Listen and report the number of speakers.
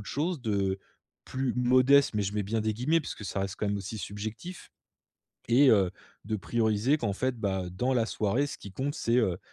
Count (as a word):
one